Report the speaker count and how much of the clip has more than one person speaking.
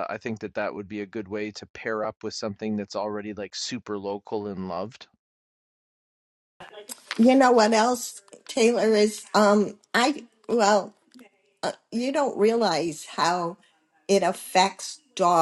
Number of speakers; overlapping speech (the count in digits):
2, no overlap